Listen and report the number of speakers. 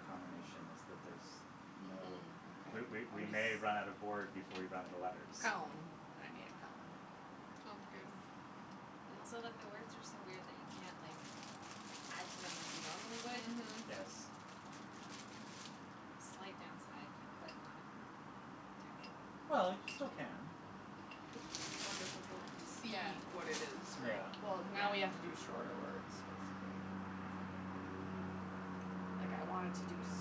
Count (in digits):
4